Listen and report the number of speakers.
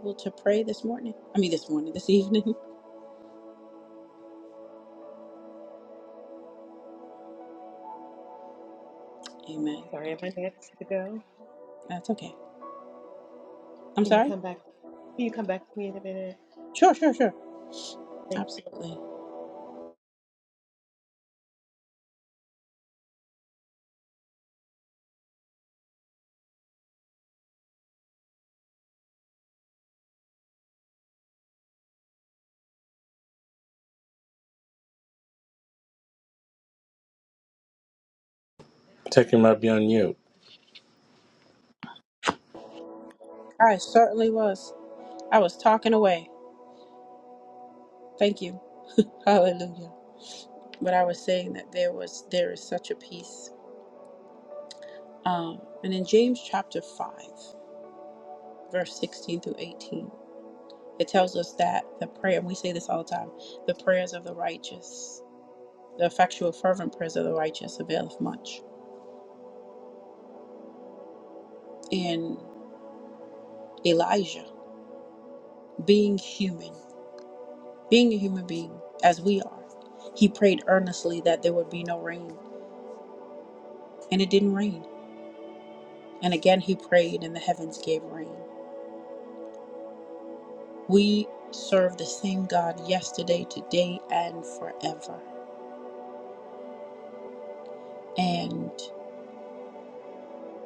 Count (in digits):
3